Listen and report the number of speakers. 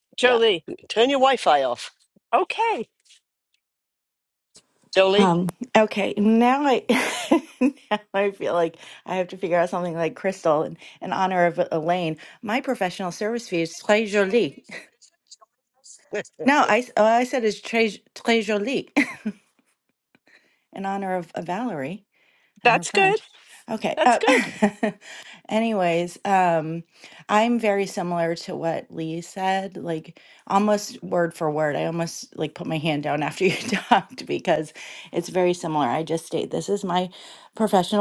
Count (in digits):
3